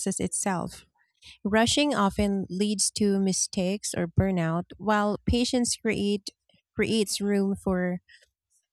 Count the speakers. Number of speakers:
1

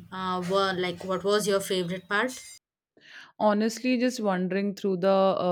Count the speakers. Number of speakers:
2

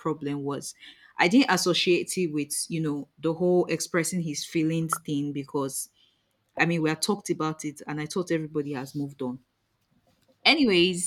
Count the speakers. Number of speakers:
1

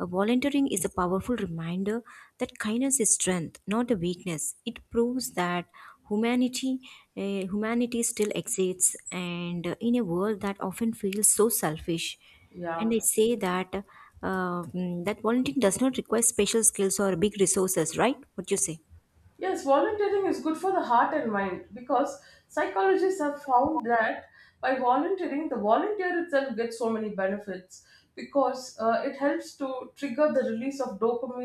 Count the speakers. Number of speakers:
2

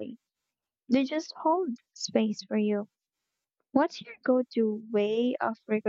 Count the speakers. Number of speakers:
1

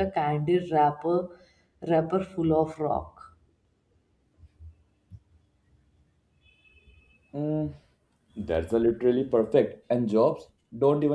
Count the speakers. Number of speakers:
2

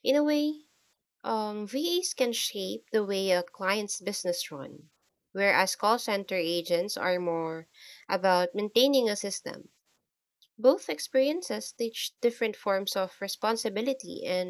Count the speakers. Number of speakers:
1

